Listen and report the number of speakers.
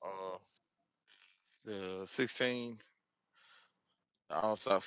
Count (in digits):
1